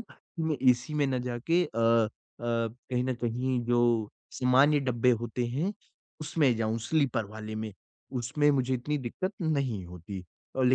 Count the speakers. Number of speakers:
one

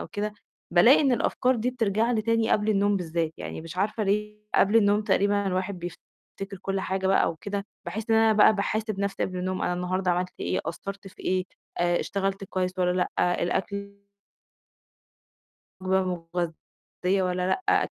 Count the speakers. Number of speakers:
one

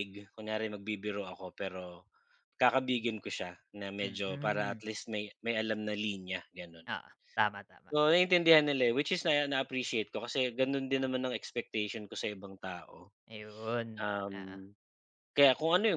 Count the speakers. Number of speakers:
two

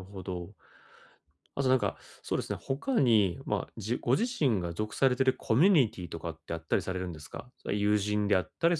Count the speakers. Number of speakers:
one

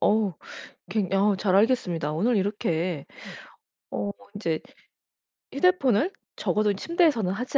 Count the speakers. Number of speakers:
one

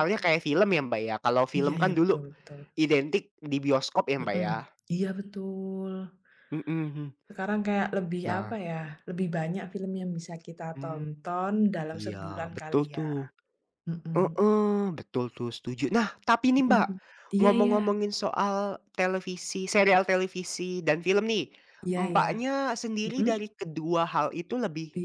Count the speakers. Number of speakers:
two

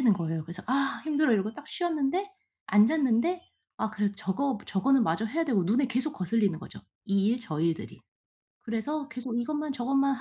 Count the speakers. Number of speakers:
one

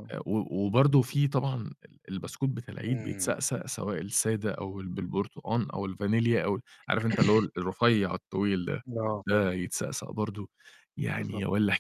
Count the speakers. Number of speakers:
two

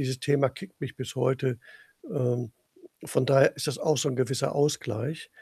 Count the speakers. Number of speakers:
one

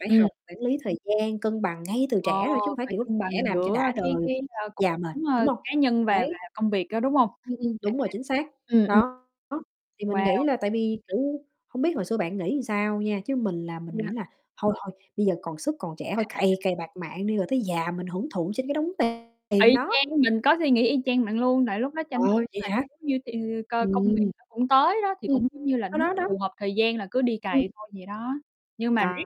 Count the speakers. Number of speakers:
two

